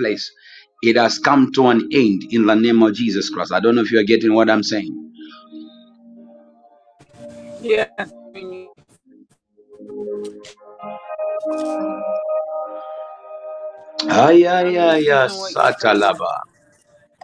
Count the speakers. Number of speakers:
2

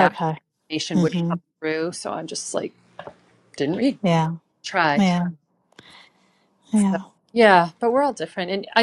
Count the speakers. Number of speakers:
2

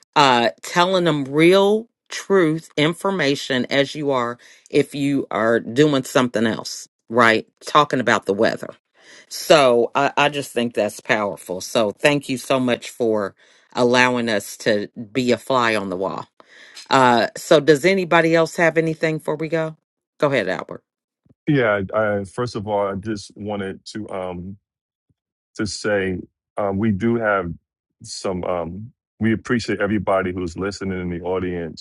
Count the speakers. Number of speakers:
2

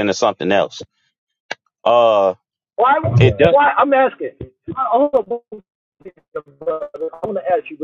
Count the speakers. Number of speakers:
2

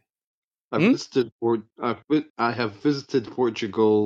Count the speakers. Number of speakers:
1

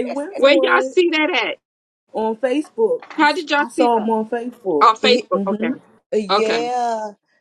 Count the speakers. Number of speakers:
3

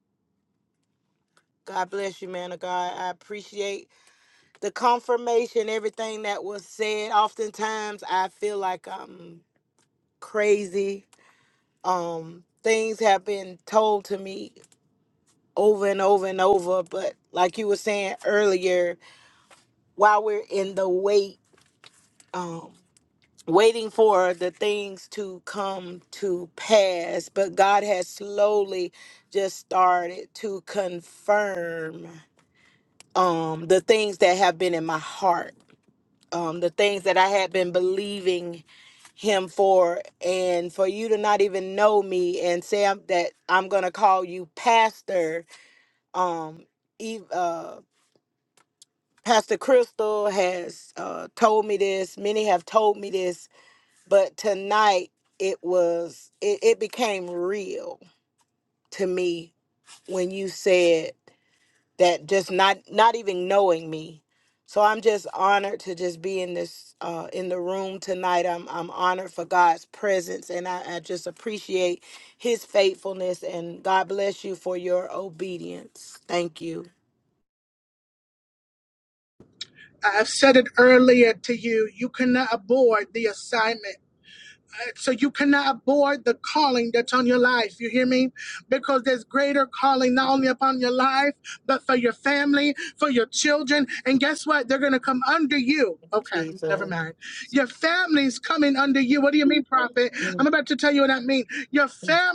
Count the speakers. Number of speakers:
2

